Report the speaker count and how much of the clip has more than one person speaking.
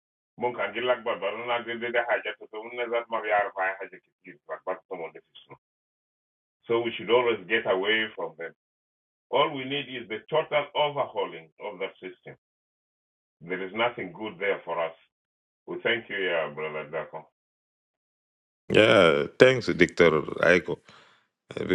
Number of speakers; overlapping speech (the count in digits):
2, no overlap